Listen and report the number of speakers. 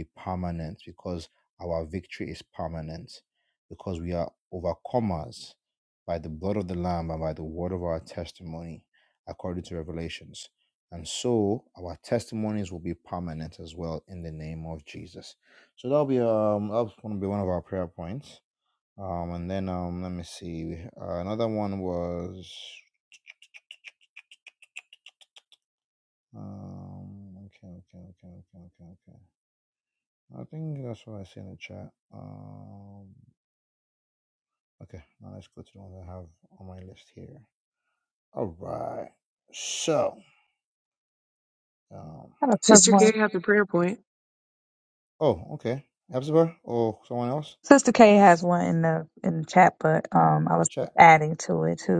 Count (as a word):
three